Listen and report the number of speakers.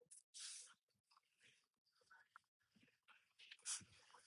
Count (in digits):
0